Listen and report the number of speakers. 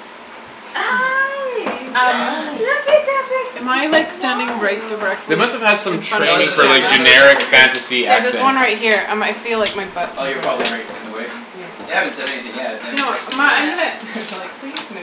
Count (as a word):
four